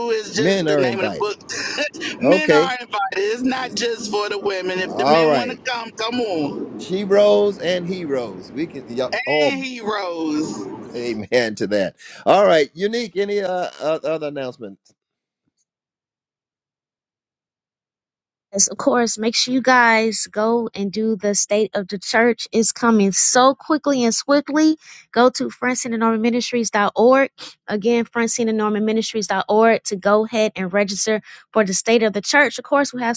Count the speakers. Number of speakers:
3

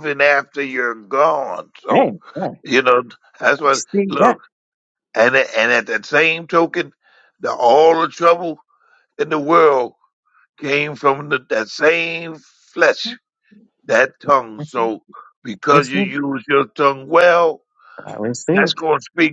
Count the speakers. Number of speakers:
2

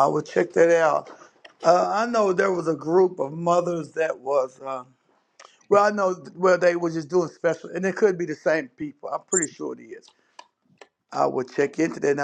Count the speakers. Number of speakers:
1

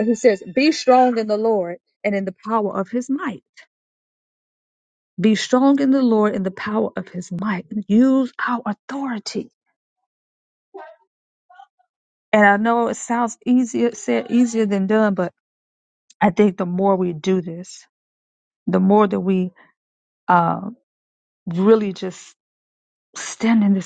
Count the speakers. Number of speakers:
1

